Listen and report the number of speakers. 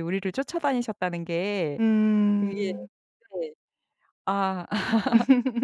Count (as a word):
two